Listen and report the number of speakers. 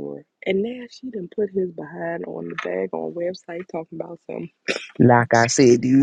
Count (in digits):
2